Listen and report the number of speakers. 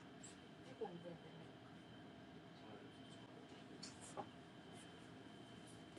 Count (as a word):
zero